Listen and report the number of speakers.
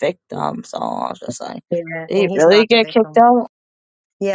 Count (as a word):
two